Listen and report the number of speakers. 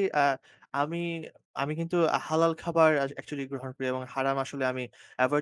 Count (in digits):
1